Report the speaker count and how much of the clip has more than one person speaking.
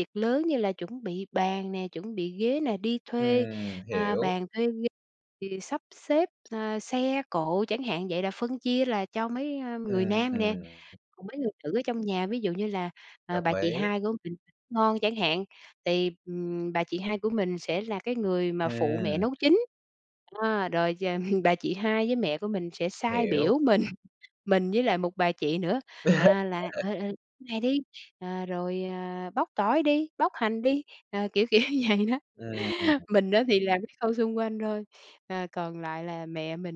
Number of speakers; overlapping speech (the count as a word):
two, about 8%